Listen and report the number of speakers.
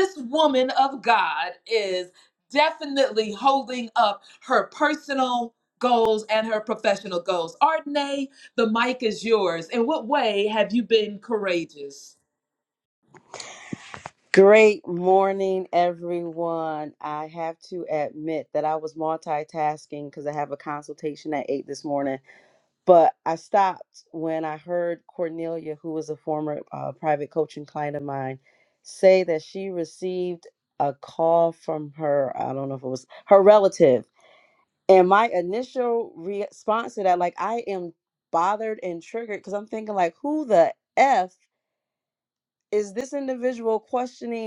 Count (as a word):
two